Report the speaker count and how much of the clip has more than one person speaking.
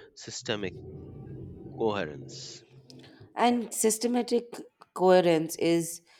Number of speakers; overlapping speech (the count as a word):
two, no overlap